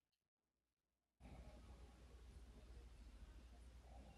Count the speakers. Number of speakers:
zero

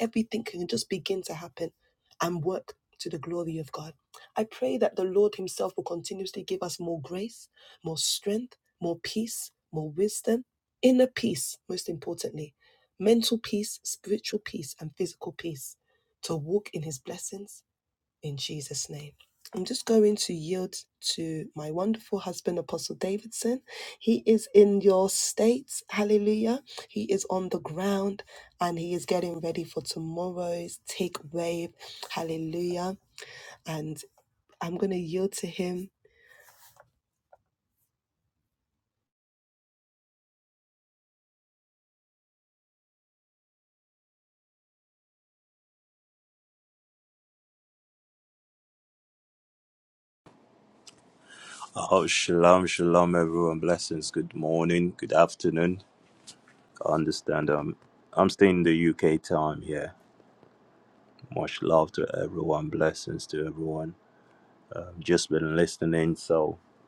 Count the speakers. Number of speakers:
two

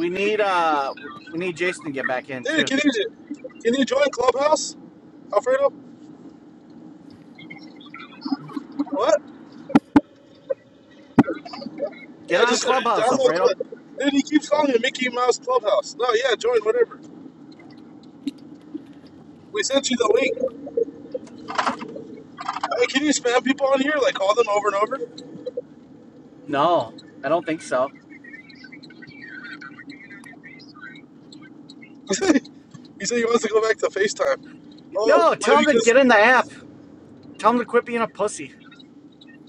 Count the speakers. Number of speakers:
two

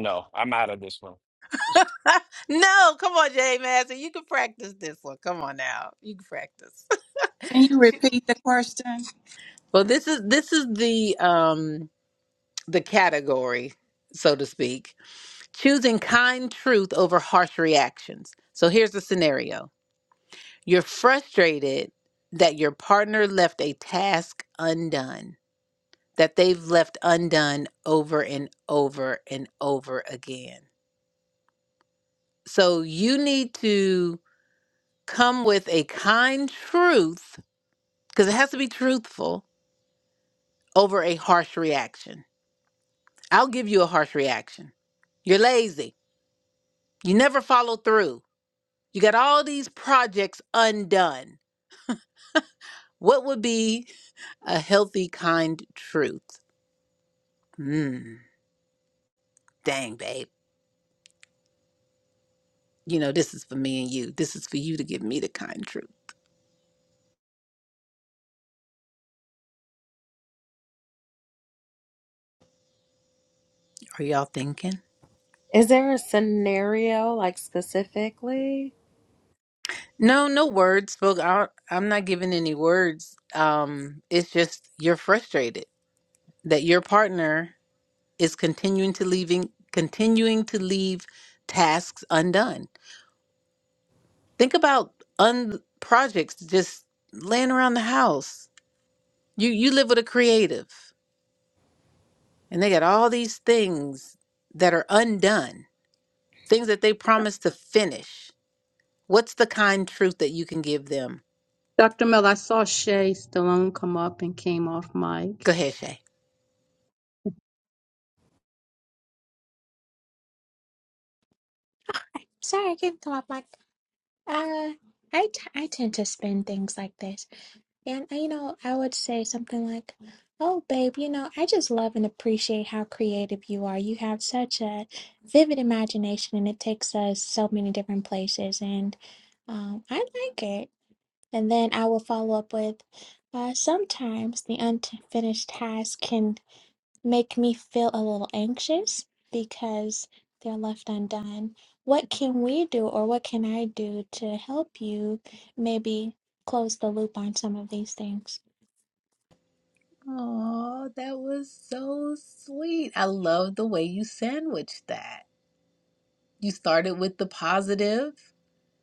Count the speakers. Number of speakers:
six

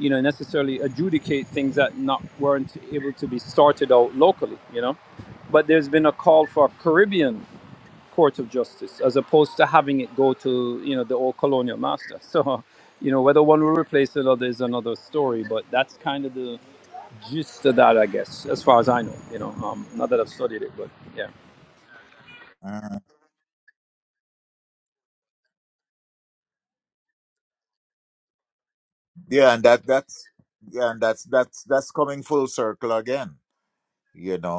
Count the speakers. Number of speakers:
two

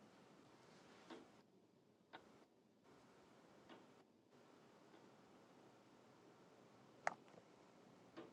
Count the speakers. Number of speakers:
zero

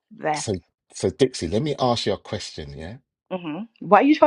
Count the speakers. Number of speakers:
two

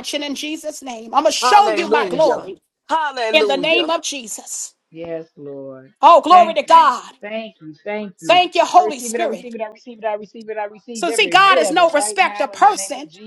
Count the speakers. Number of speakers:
three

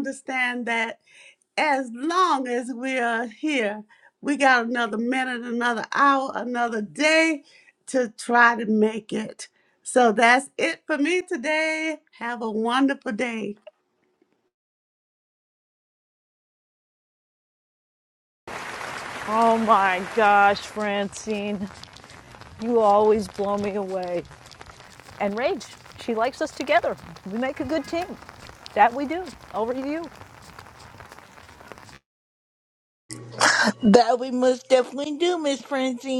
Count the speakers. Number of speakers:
three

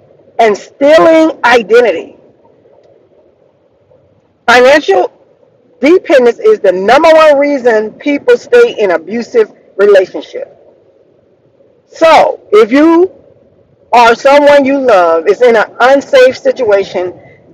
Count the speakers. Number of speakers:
one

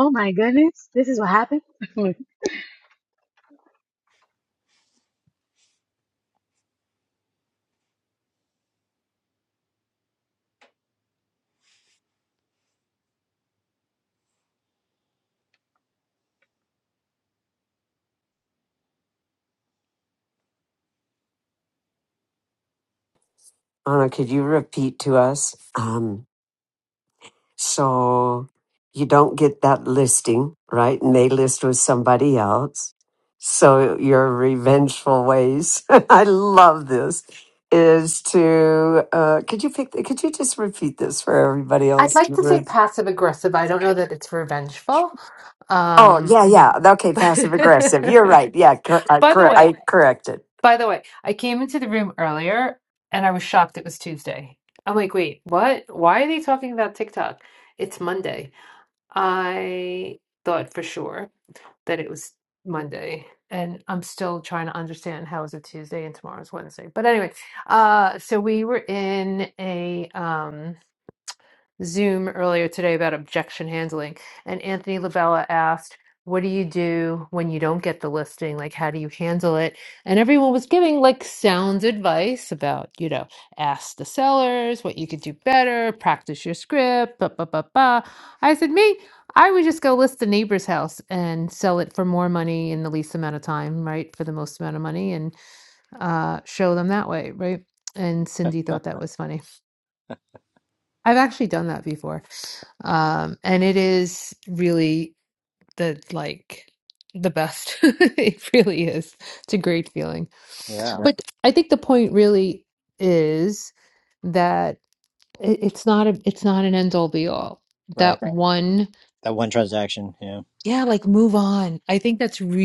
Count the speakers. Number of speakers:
four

